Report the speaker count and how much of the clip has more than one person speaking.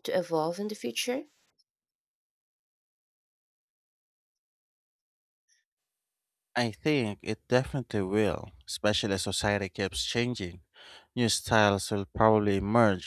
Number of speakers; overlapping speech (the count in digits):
2, no overlap